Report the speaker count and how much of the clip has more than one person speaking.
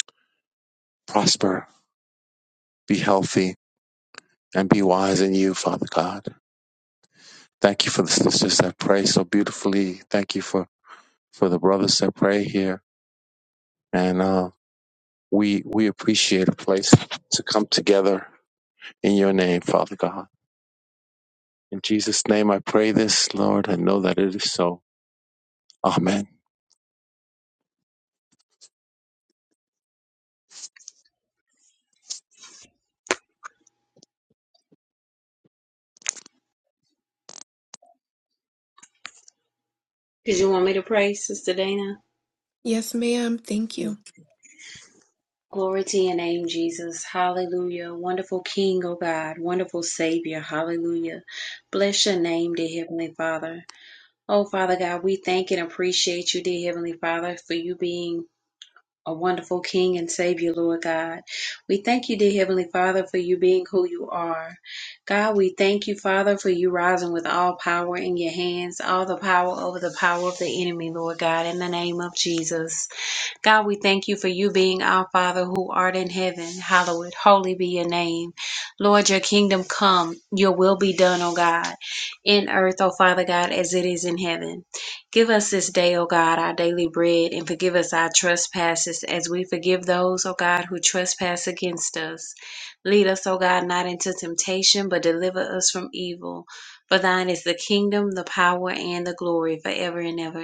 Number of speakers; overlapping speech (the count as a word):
three, under 1%